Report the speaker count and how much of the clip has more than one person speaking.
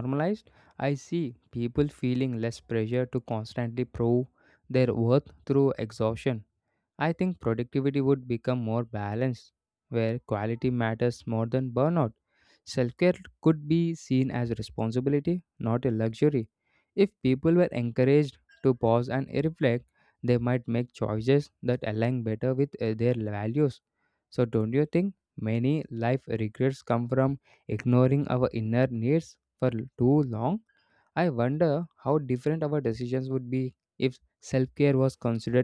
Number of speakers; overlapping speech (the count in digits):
1, no overlap